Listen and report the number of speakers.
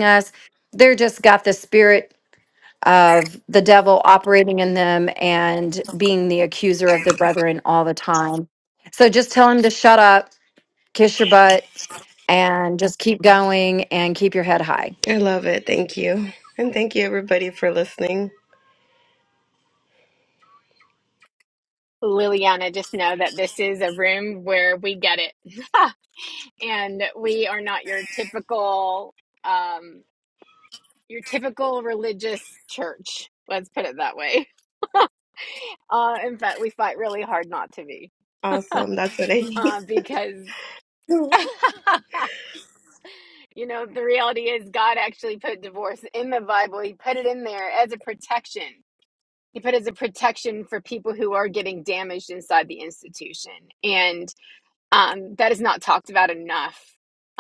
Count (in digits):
3